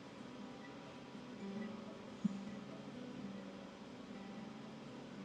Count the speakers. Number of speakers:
0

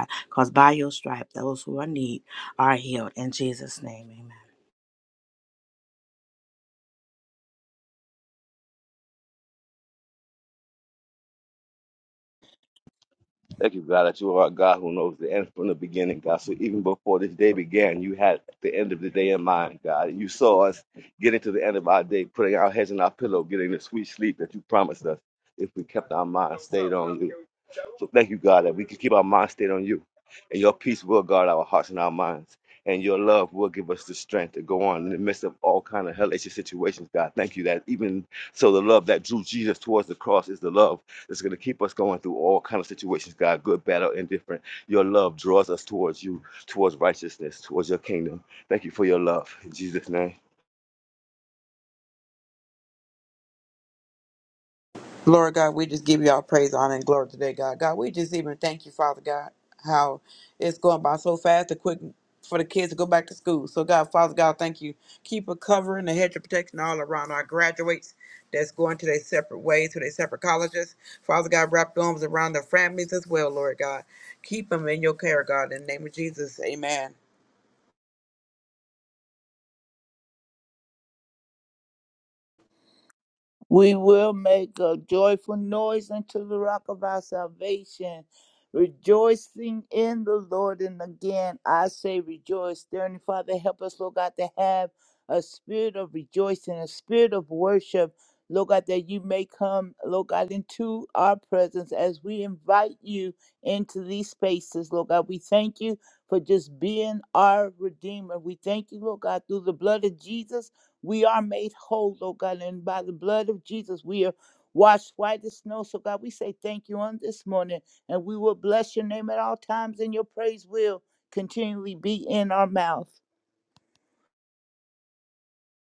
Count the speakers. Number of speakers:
4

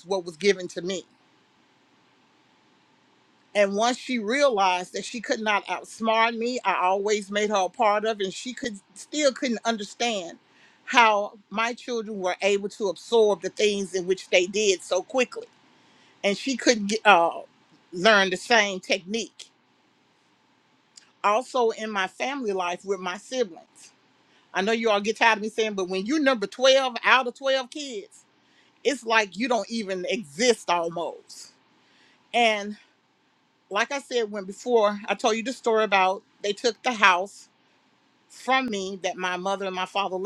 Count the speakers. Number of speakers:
1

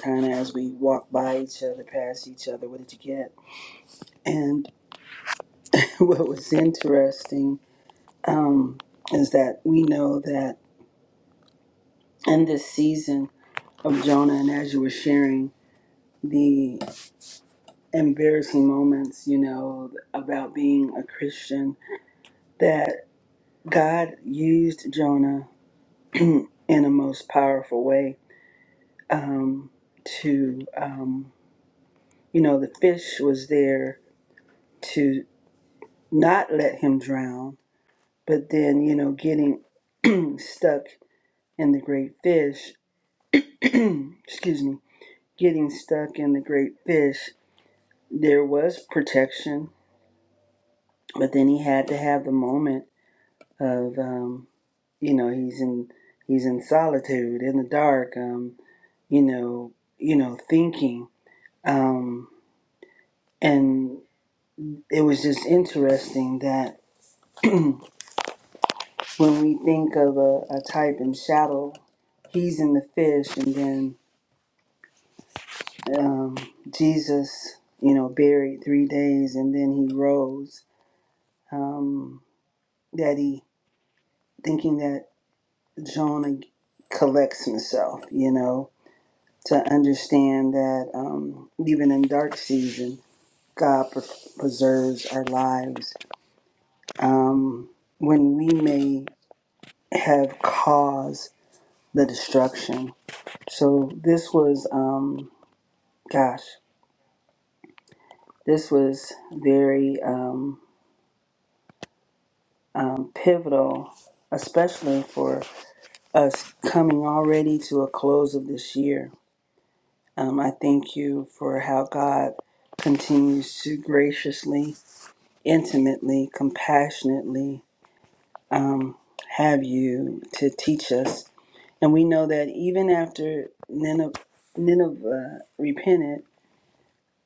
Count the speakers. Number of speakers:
1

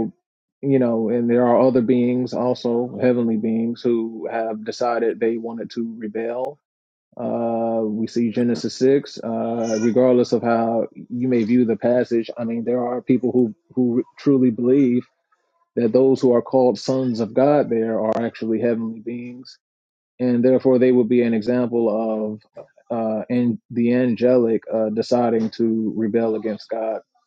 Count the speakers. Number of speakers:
1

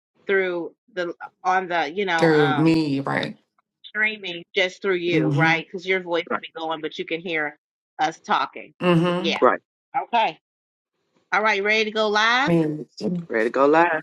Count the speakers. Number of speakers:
3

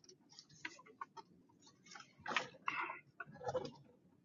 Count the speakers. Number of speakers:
0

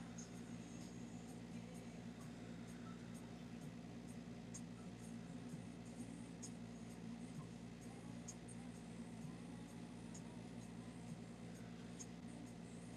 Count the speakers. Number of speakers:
0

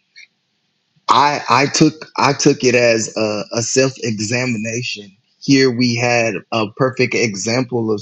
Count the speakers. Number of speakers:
1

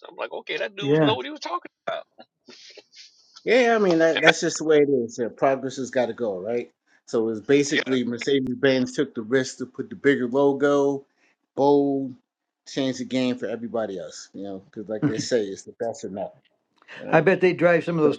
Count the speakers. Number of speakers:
3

